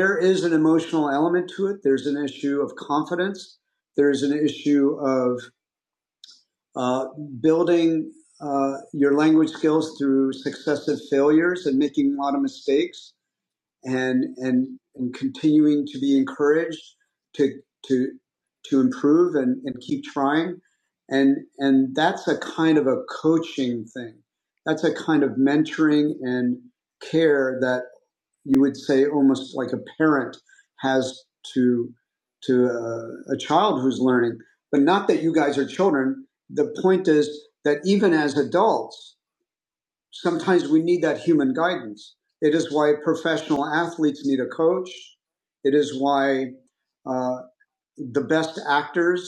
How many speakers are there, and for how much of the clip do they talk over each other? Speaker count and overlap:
1, no overlap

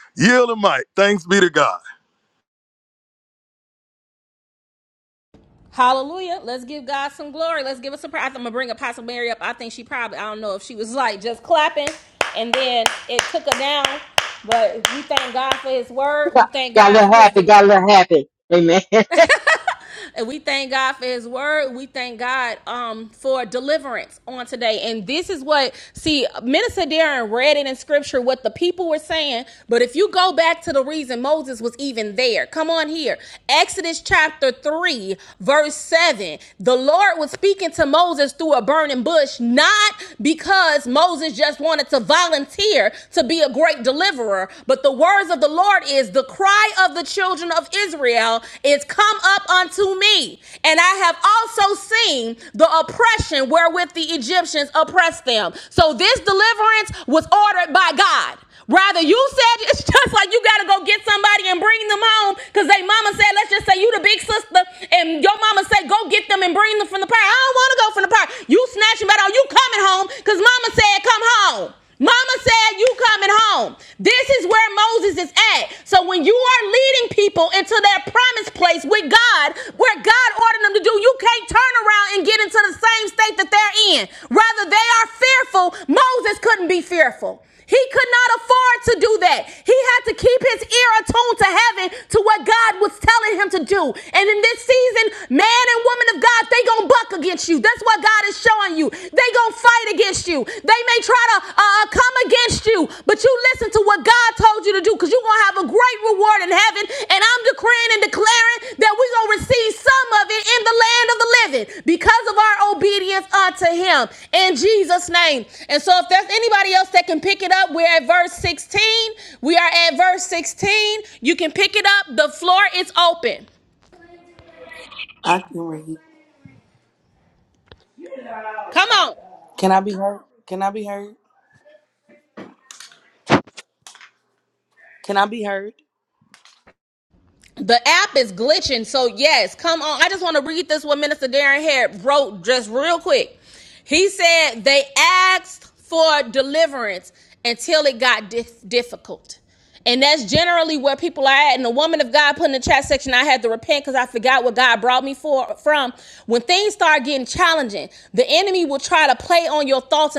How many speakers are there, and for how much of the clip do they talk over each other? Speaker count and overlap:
4, under 1%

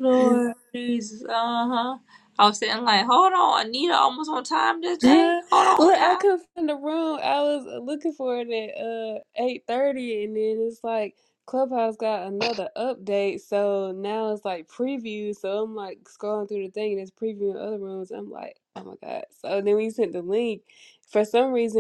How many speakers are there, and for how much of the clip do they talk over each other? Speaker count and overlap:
2, about 5%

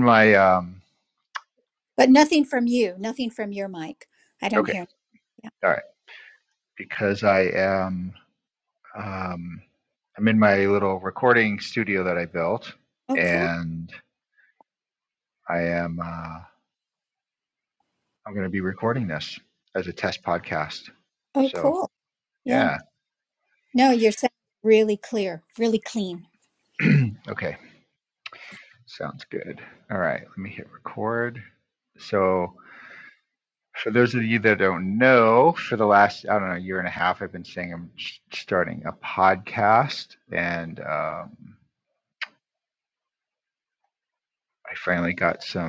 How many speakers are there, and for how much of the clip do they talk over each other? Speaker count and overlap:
2, about 2%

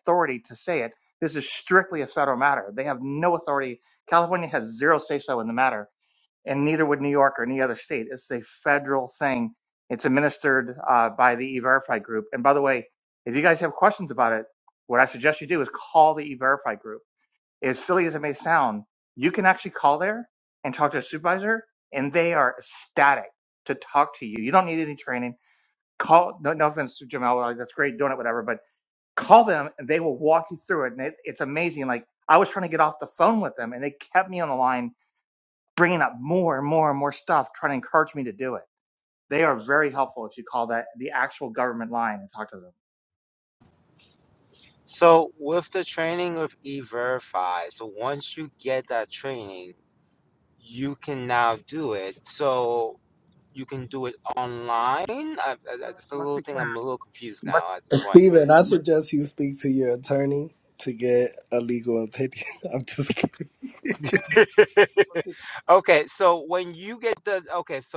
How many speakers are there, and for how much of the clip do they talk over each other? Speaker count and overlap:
3, about 2%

